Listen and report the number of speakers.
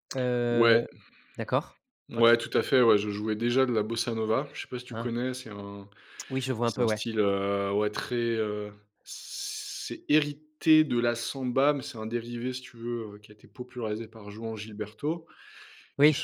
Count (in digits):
2